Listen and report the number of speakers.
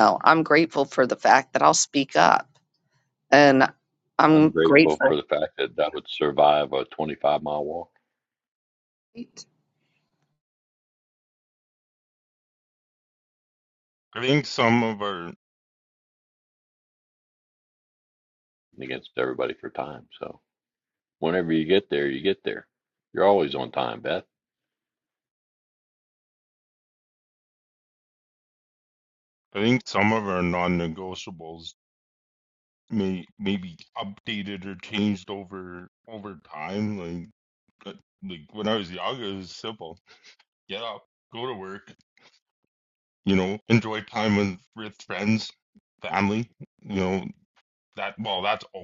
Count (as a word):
three